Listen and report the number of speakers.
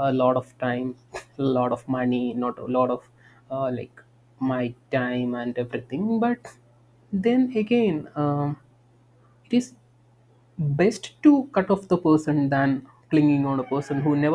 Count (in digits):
1